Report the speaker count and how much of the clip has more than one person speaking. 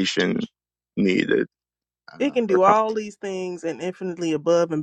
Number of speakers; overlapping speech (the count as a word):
two, about 10%